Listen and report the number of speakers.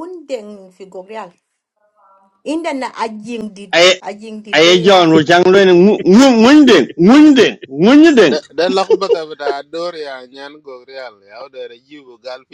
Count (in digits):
3